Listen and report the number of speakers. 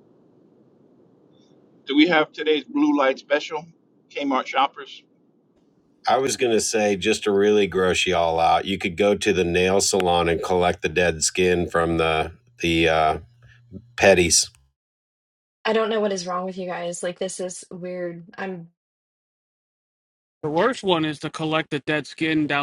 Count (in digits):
4